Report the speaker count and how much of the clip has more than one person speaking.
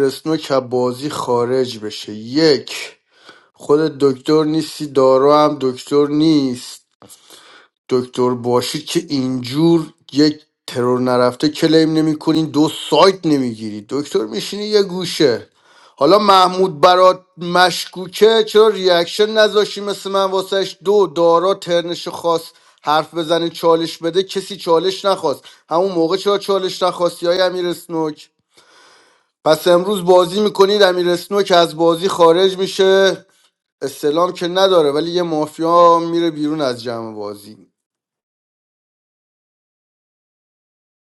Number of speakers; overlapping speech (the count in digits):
1, no overlap